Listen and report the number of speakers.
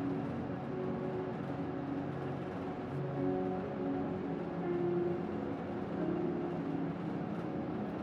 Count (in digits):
0